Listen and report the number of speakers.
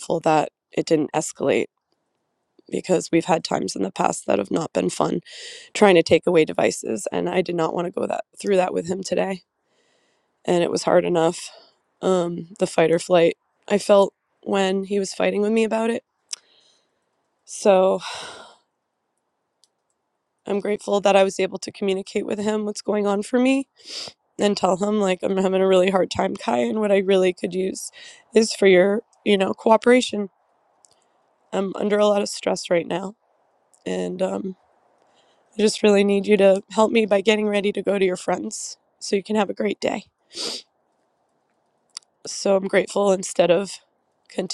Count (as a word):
one